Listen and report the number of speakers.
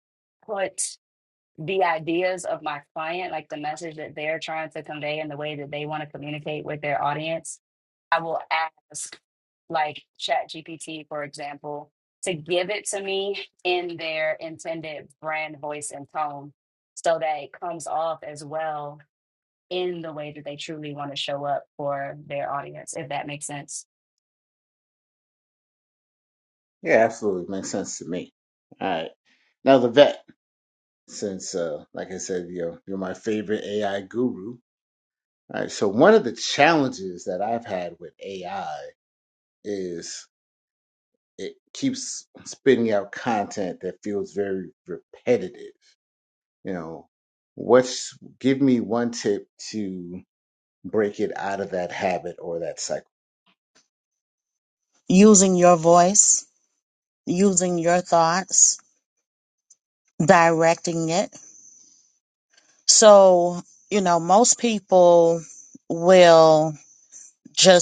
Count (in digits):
3